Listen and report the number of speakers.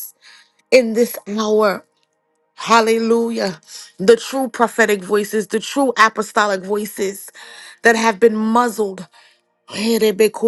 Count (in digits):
1